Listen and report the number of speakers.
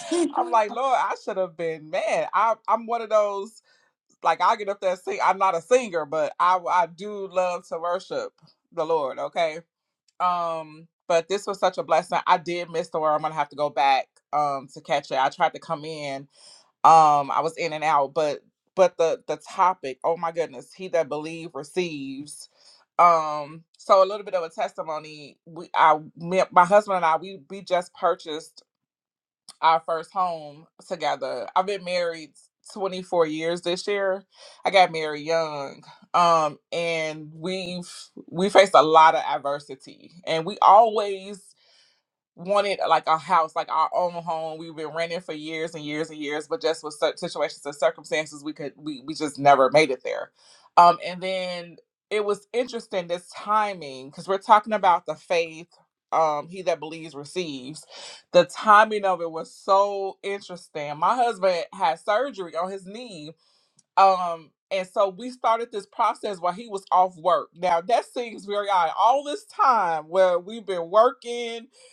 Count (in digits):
1